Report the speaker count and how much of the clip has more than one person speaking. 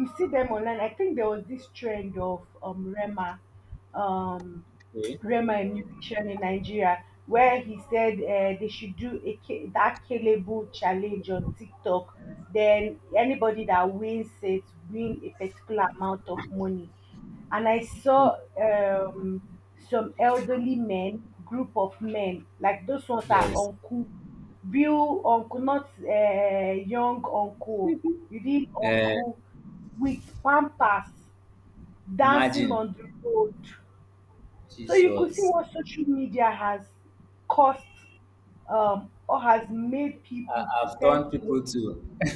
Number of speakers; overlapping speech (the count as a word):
two, about 7%